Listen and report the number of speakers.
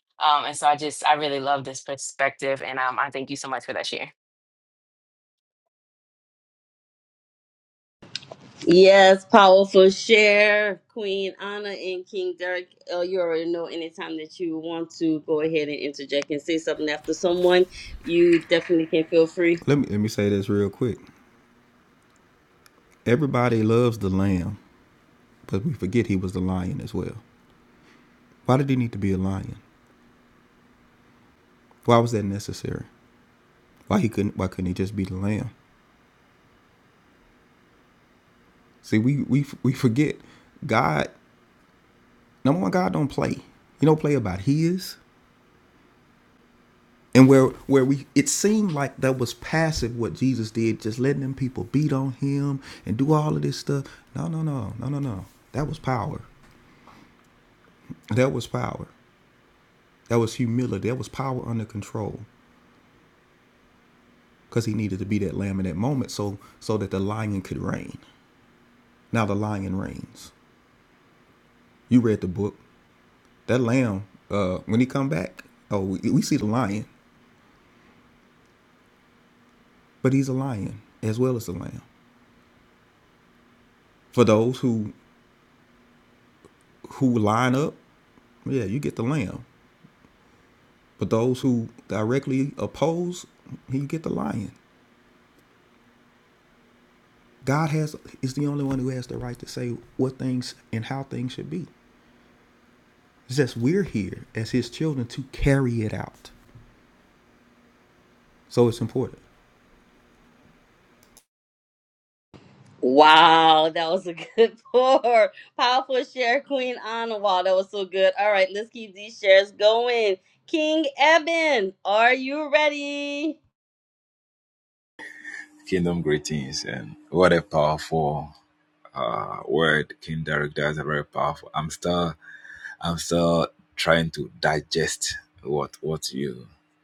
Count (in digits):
4